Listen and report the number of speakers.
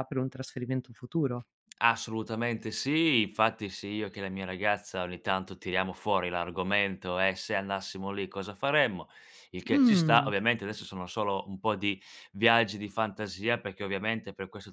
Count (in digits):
2